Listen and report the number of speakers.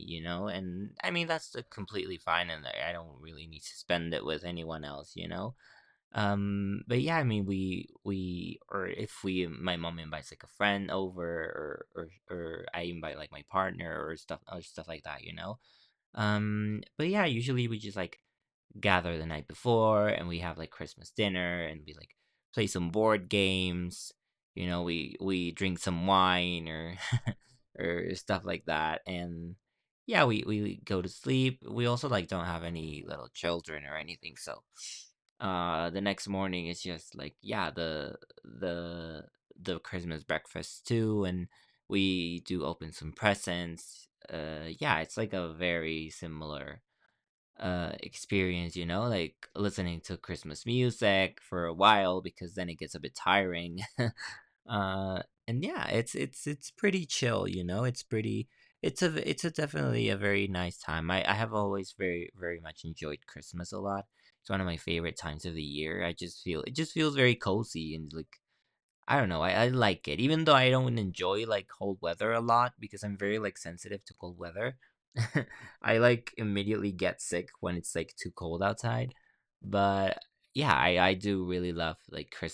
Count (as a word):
one